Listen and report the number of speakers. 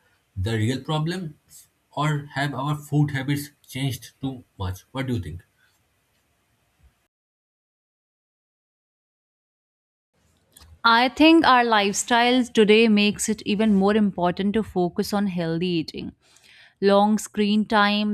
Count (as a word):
two